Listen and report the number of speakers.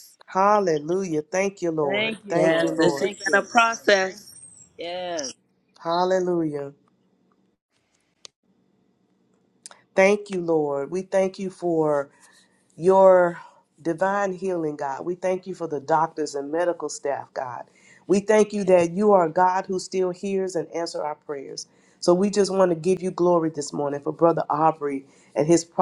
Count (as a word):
three